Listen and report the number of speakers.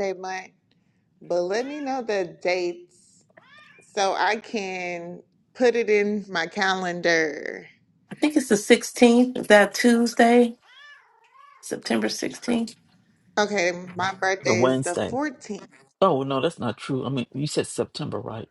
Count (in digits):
3